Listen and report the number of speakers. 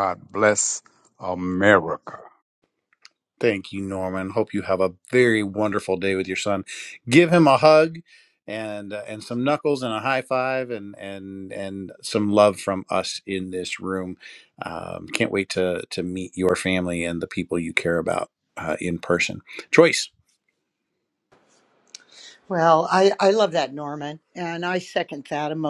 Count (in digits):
3